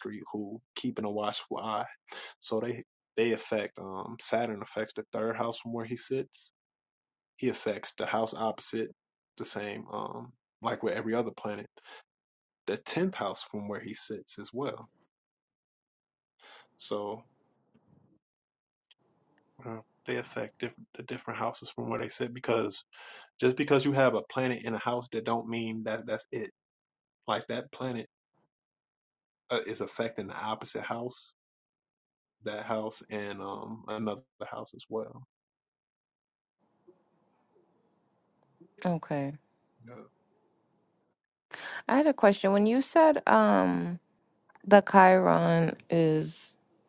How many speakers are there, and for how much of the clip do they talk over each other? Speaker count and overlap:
2, no overlap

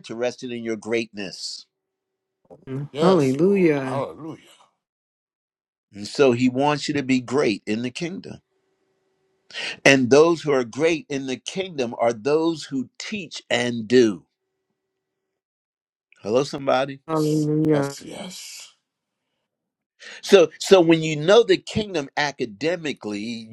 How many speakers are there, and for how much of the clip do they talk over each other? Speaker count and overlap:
3, about 5%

